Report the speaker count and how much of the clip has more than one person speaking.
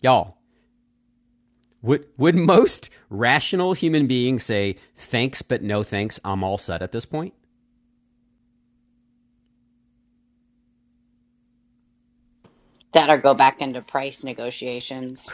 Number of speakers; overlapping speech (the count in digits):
2, no overlap